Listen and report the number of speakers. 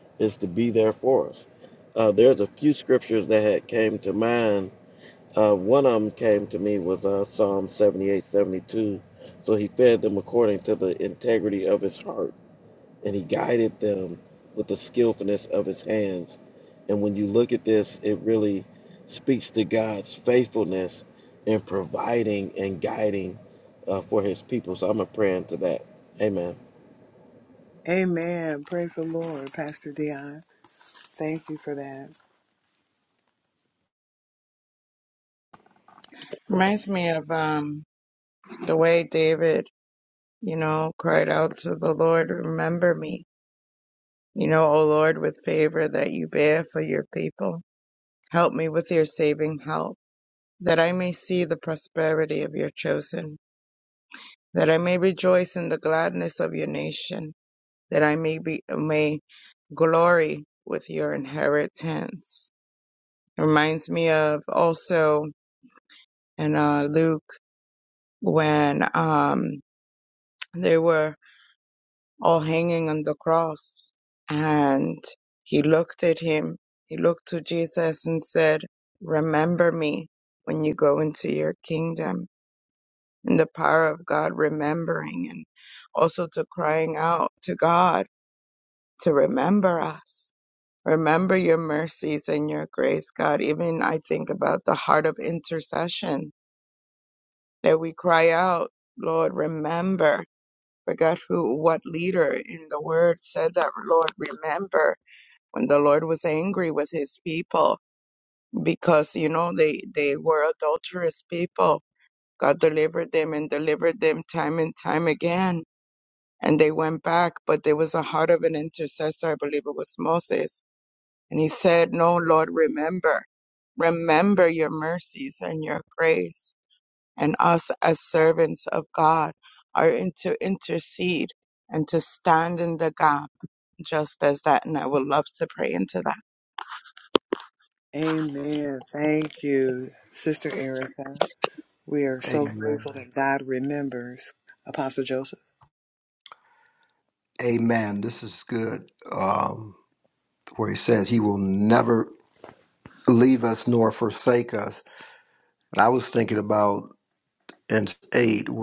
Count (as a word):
four